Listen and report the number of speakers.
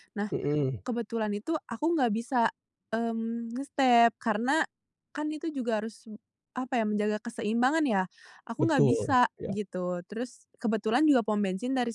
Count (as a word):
two